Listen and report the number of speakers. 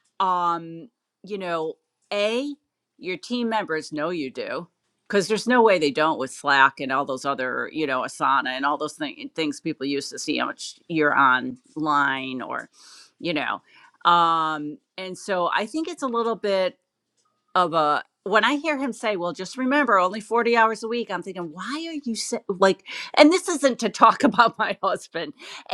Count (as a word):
one